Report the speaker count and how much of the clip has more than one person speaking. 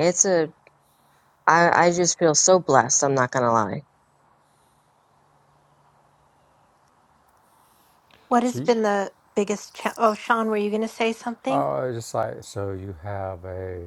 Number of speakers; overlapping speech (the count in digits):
3, about 3%